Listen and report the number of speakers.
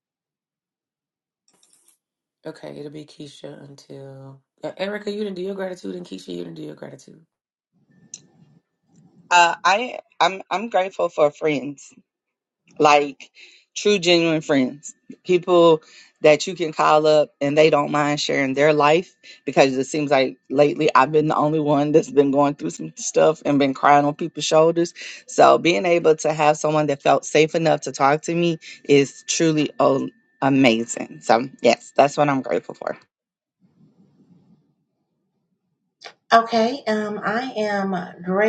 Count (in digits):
3